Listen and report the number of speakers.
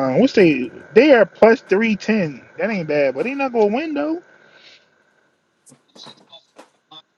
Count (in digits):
1